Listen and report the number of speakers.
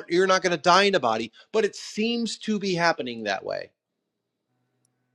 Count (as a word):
one